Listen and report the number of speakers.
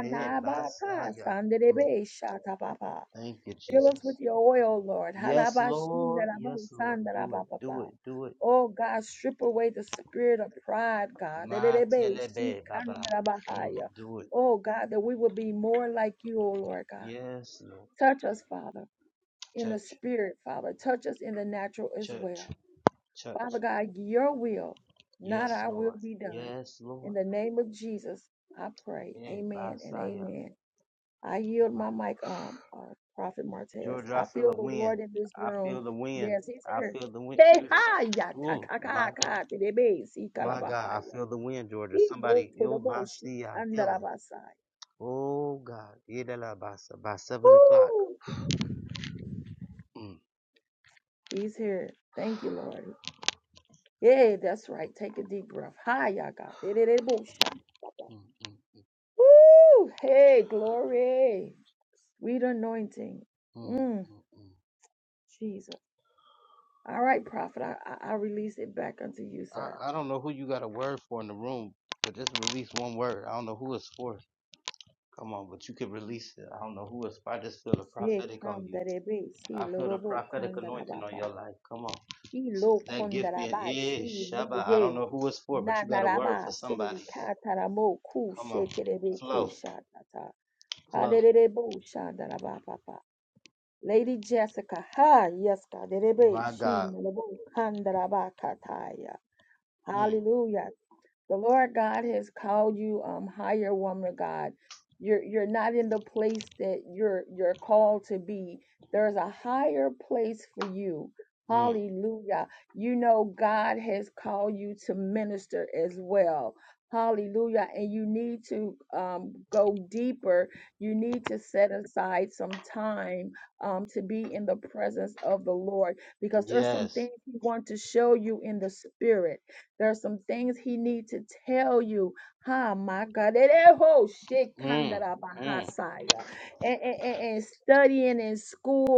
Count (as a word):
two